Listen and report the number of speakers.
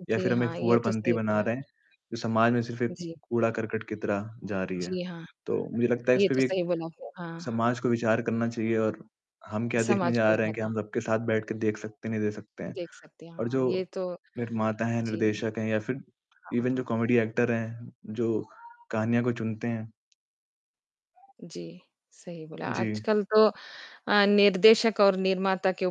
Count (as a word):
two